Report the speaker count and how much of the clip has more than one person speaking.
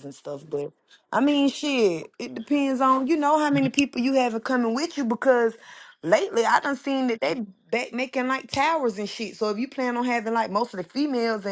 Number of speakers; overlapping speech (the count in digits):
1, no overlap